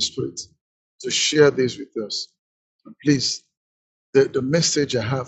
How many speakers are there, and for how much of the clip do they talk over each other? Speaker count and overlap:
1, no overlap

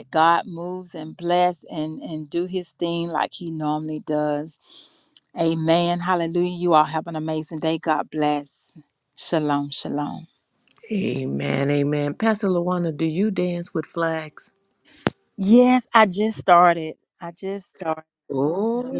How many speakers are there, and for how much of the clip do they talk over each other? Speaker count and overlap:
2, about 1%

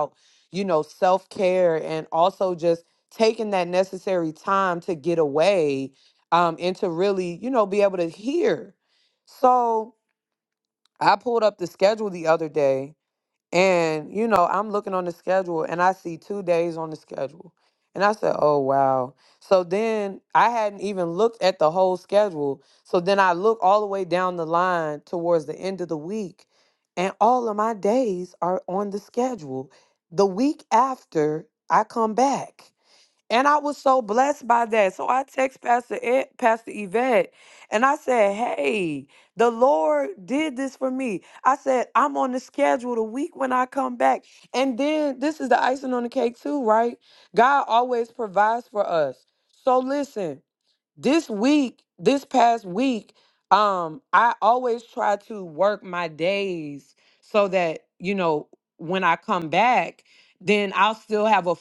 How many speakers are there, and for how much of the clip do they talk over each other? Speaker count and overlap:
1, no overlap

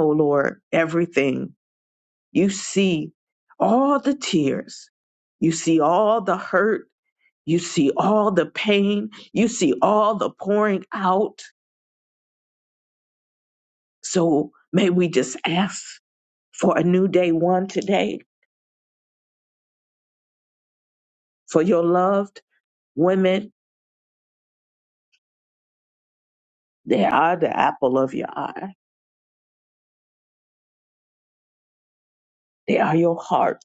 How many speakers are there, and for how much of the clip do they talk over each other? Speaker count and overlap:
1, no overlap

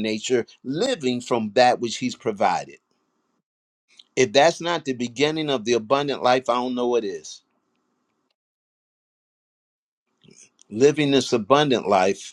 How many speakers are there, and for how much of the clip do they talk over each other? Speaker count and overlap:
1, no overlap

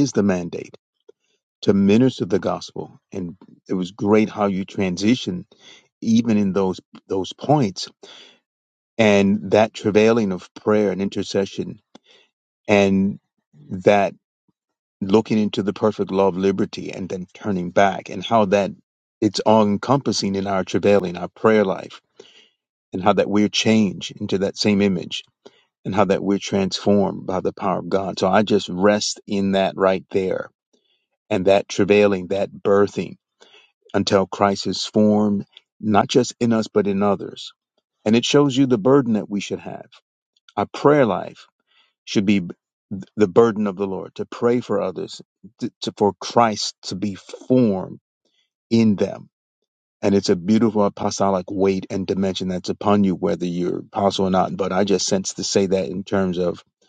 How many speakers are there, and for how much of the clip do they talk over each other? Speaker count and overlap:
1, no overlap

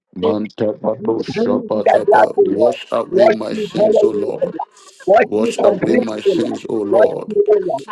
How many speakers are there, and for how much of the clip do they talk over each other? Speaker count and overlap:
2, about 67%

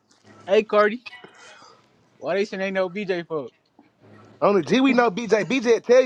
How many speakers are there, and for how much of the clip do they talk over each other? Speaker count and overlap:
2, no overlap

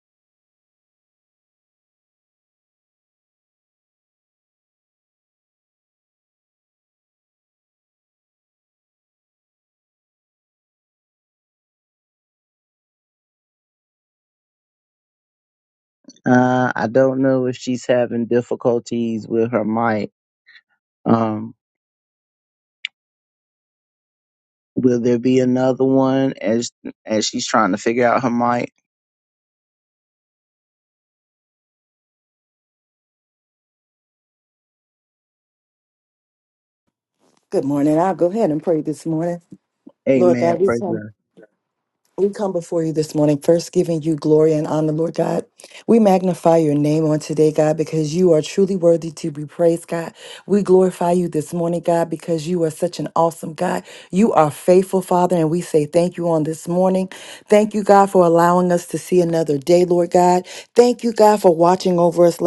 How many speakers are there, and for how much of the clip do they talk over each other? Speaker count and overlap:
2, about 1%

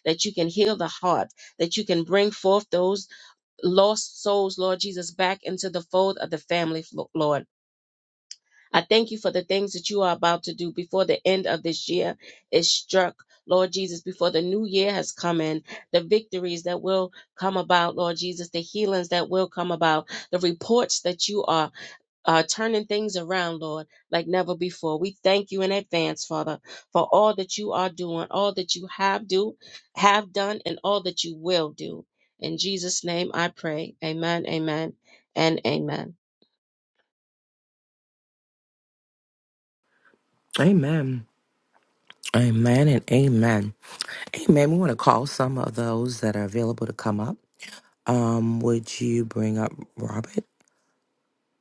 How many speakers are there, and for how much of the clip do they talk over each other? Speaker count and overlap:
2, no overlap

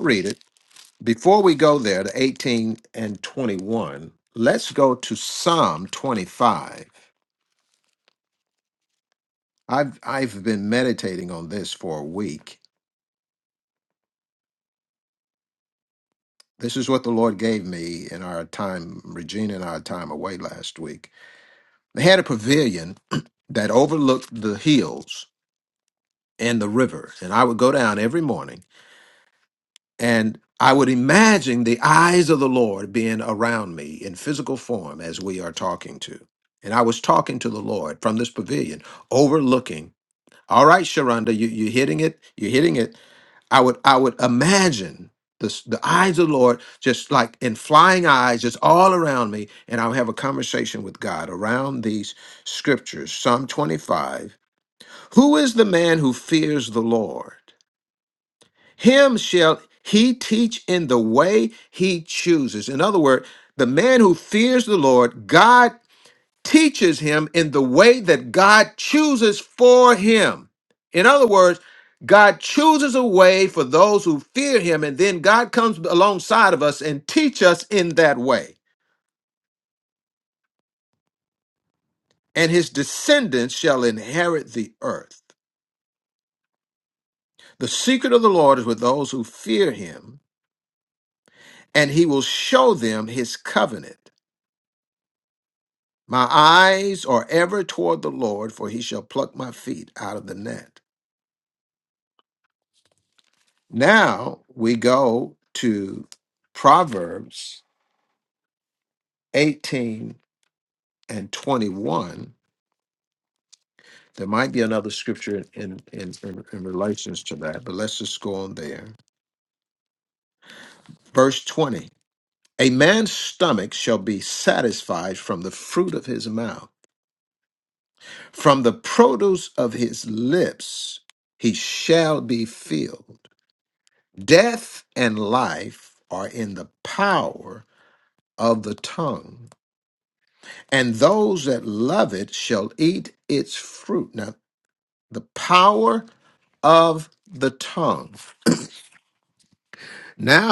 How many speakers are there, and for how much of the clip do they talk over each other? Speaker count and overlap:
1, no overlap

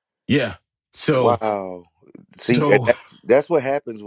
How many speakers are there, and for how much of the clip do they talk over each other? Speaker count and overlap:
2, about 19%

